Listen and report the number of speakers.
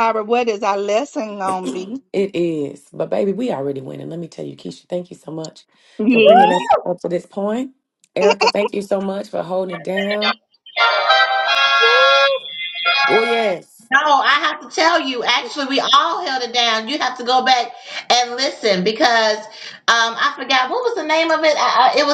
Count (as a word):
three